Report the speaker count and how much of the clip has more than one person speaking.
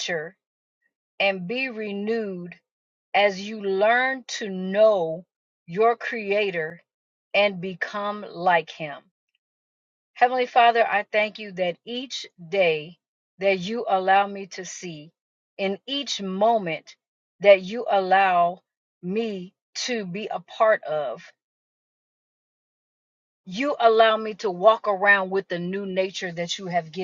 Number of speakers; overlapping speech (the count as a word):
one, no overlap